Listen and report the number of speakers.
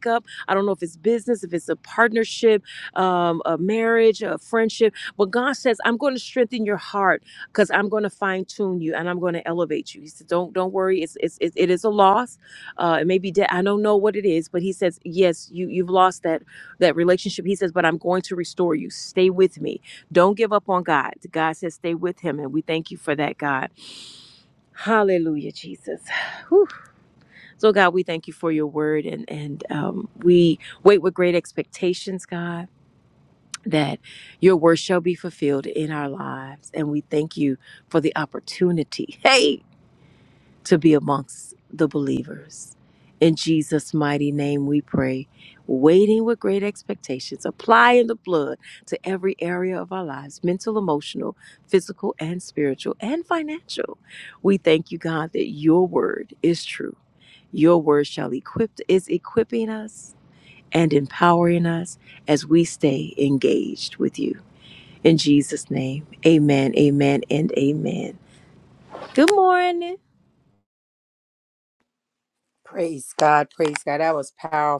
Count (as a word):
two